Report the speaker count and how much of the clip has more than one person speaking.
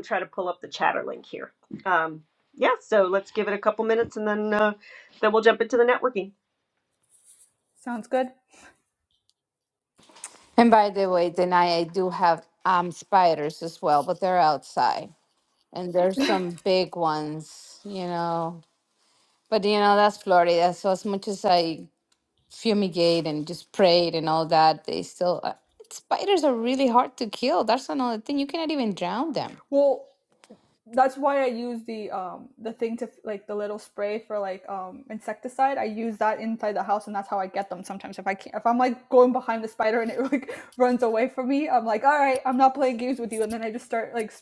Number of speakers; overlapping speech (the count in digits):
3, no overlap